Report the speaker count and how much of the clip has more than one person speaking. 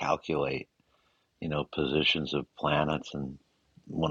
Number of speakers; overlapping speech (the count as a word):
one, no overlap